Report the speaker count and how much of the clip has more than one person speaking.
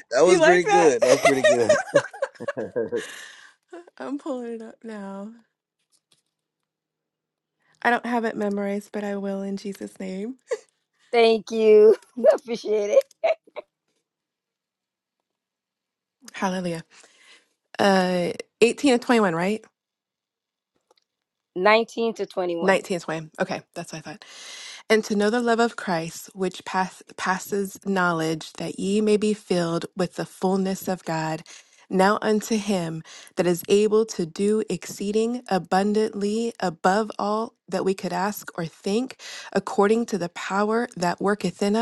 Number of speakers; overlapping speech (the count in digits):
3, about 2%